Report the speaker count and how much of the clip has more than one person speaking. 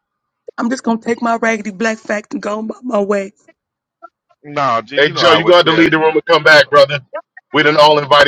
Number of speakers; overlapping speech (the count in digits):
3, about 14%